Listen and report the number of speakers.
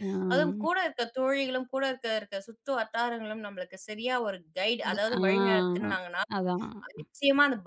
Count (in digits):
2